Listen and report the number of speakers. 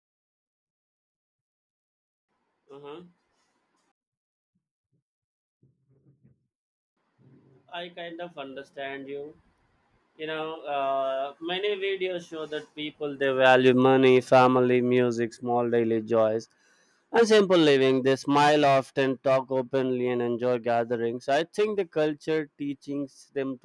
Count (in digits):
1